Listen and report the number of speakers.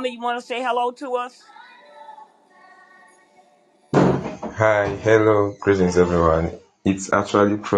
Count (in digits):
2